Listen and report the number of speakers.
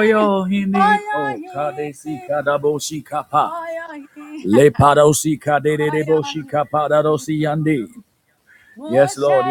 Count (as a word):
two